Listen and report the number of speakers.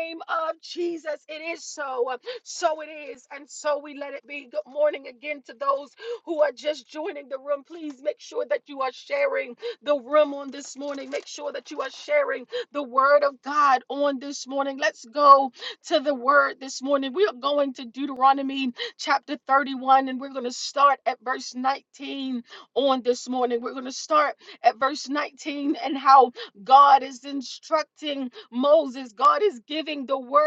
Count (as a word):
one